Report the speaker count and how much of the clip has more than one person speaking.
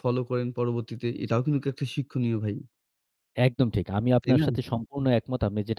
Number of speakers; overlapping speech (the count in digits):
2, about 5%